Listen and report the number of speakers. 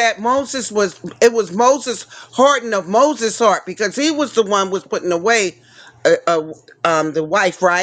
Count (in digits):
1